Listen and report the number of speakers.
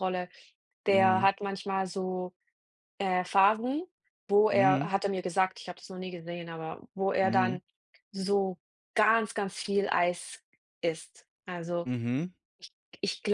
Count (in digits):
2